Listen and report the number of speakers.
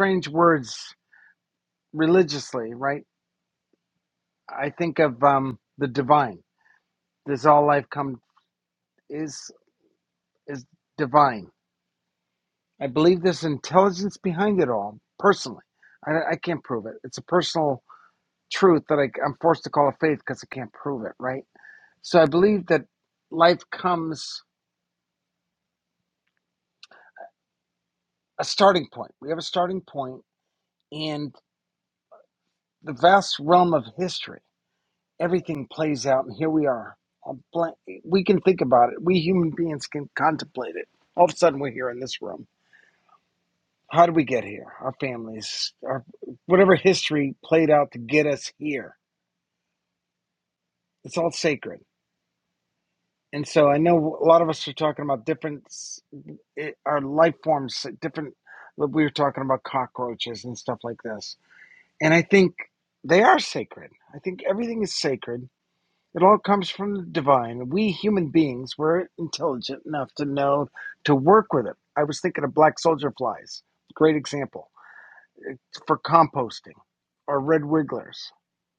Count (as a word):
one